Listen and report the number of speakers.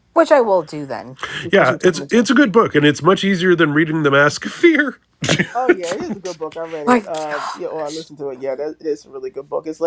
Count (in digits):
3